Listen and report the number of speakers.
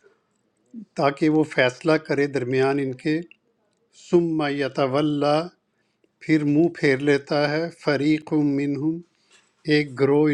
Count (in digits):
1